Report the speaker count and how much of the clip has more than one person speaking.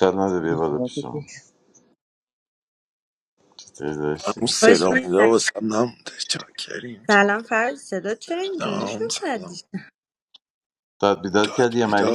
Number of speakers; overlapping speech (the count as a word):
three, about 23%